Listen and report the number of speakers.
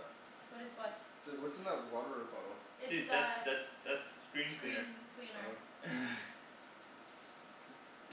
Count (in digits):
3